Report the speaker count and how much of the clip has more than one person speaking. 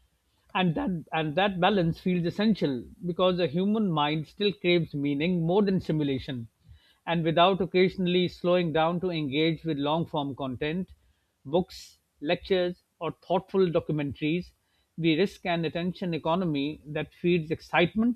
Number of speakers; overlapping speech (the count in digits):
1, no overlap